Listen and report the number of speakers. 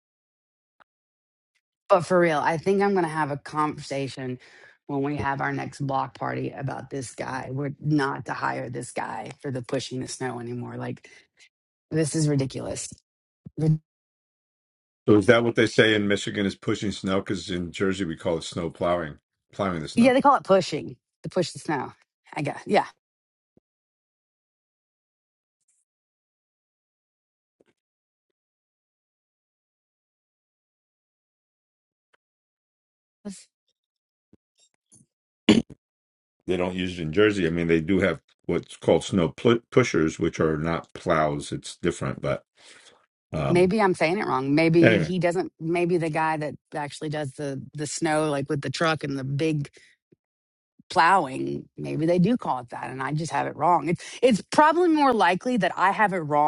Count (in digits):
2